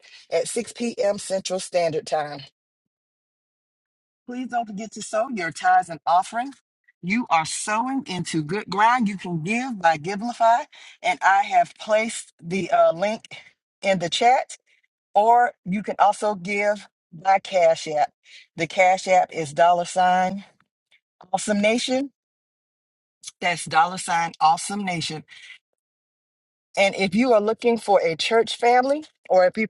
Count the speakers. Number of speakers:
1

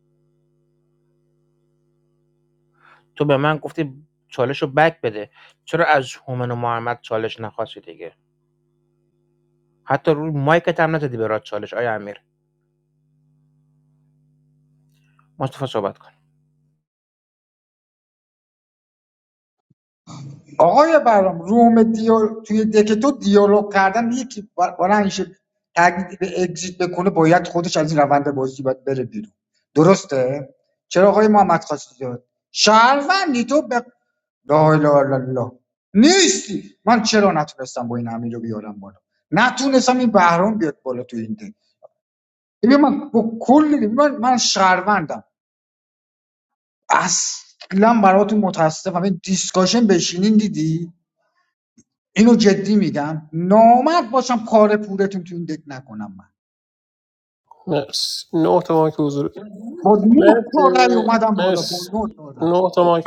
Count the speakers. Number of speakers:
3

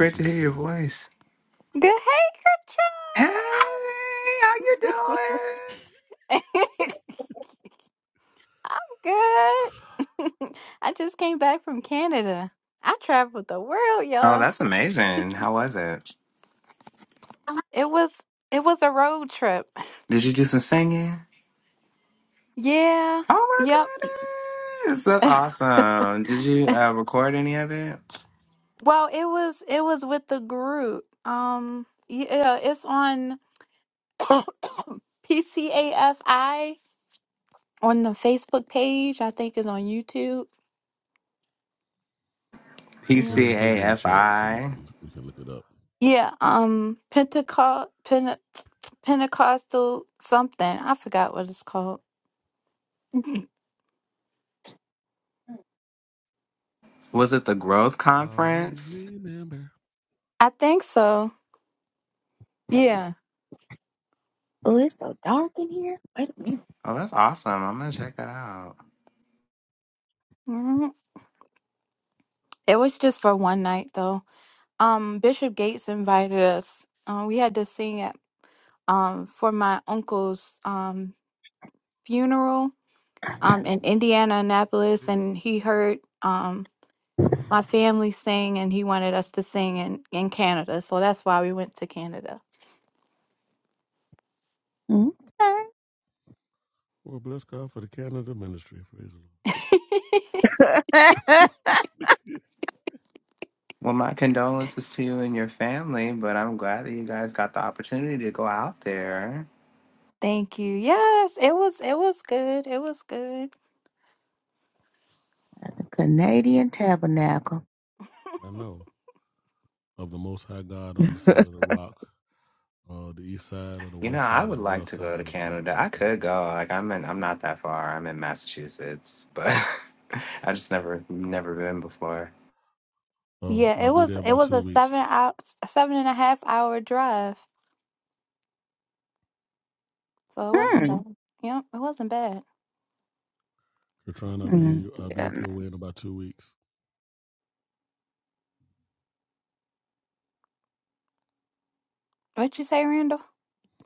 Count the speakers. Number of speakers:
4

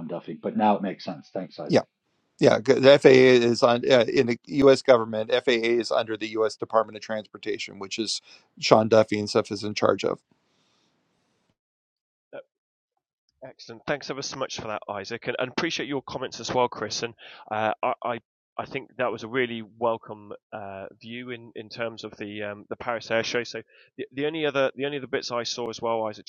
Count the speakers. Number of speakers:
3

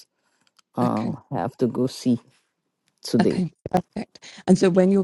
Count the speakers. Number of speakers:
2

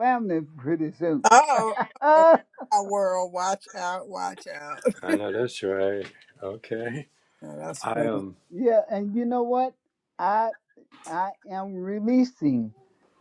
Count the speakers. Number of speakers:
3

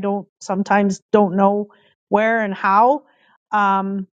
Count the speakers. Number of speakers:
1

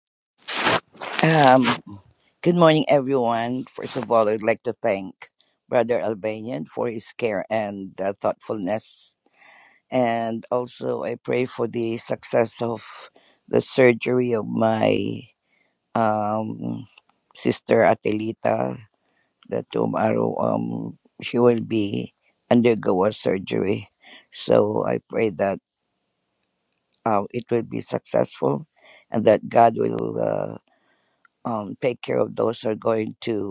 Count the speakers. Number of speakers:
1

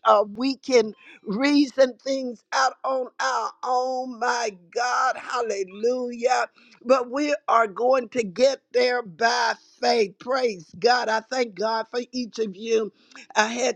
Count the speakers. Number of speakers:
1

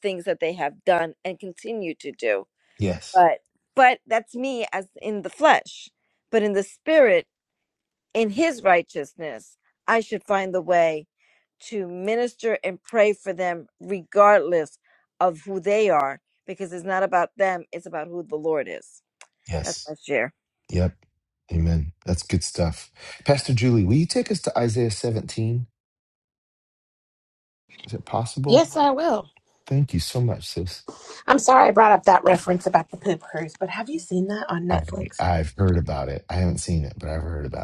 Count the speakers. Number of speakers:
3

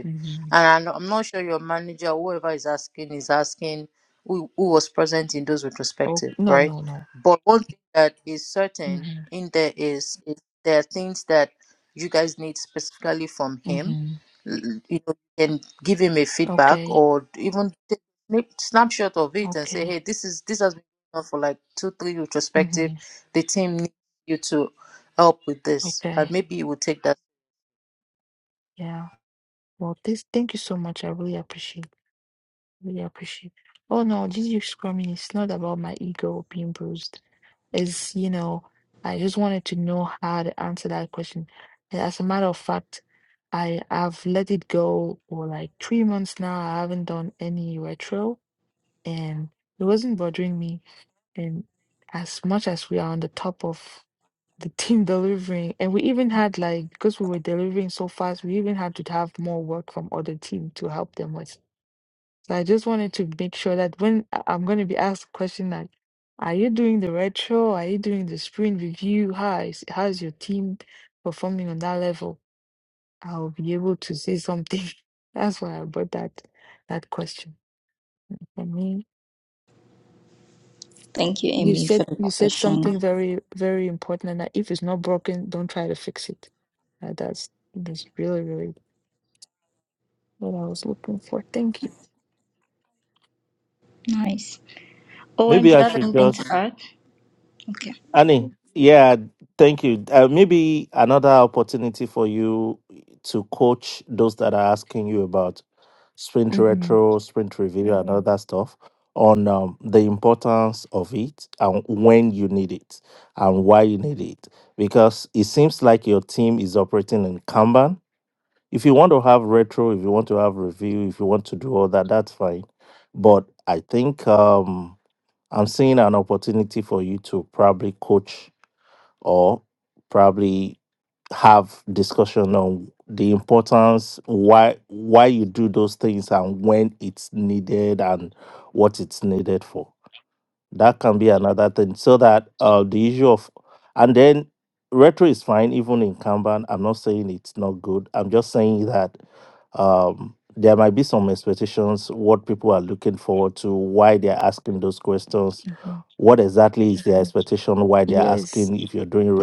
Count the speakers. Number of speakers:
4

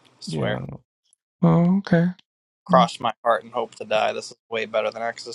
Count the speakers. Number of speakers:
2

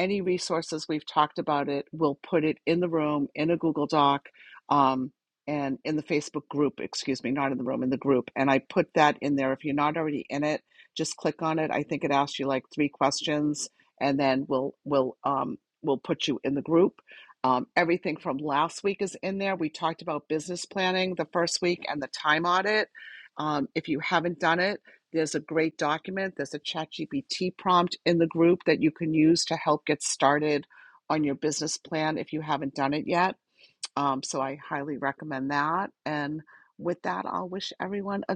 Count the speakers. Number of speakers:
1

